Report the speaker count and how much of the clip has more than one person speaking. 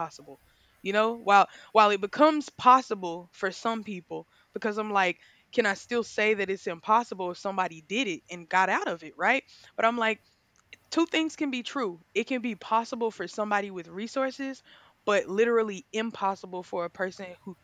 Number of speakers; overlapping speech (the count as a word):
one, no overlap